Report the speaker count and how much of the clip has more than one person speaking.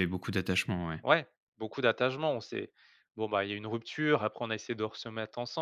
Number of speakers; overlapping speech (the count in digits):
2, no overlap